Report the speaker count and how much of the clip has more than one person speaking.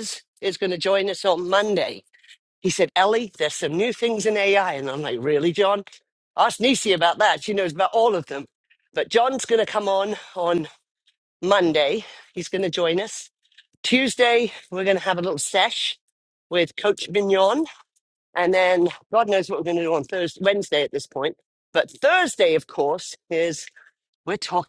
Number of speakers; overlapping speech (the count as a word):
one, no overlap